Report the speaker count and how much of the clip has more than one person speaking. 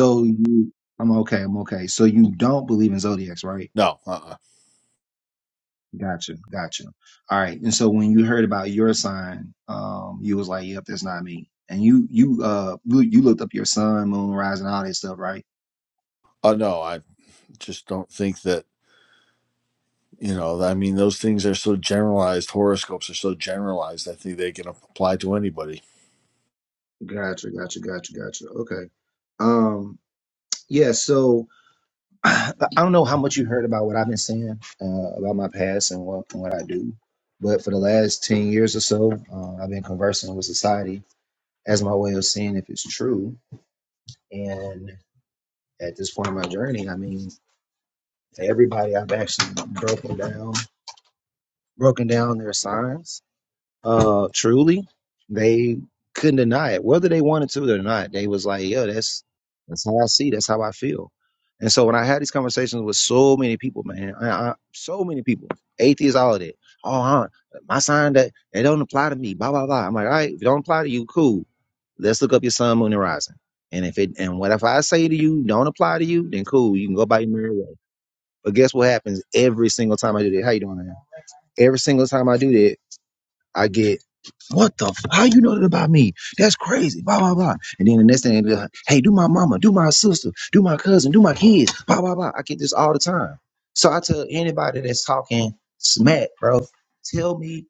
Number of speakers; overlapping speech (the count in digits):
2, no overlap